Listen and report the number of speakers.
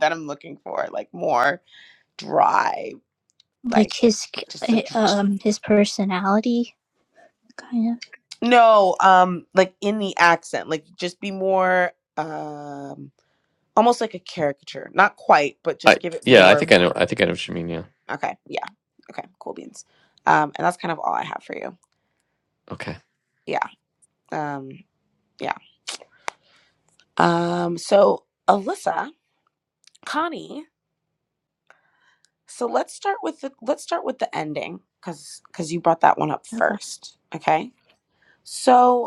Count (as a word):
three